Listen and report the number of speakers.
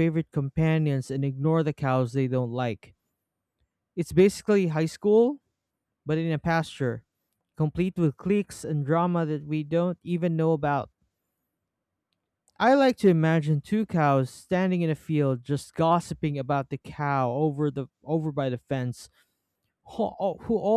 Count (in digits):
1